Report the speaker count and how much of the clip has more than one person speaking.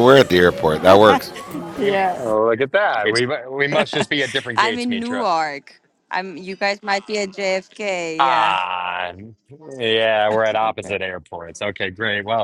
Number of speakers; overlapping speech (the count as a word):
three, about 12%